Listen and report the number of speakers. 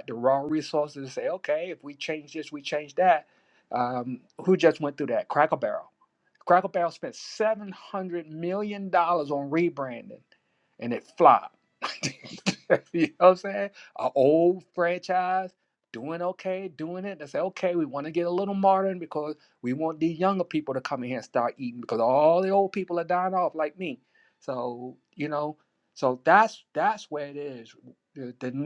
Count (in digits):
1